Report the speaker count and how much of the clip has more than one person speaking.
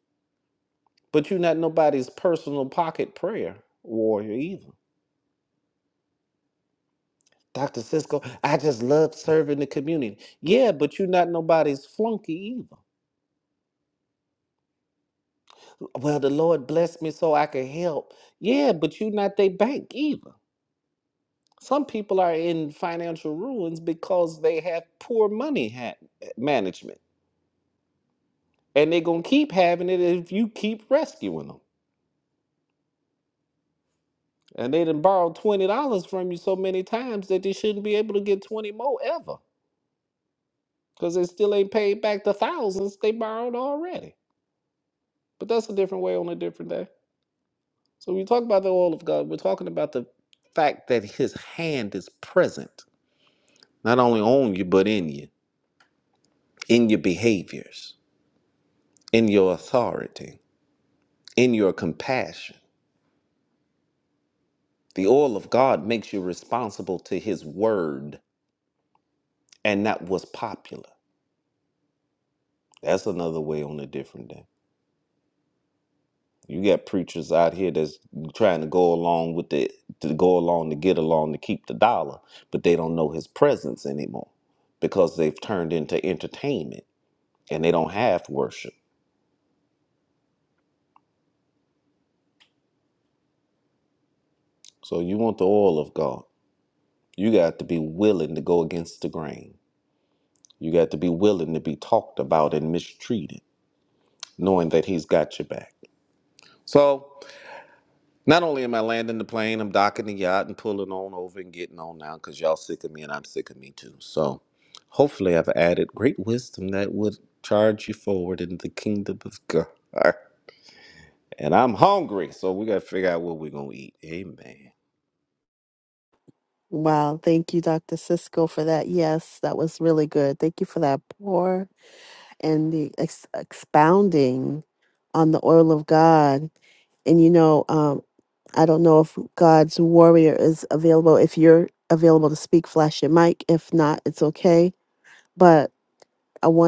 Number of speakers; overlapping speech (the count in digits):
2, no overlap